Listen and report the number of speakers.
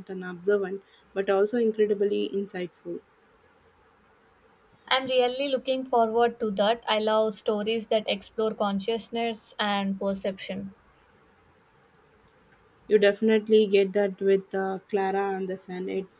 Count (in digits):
2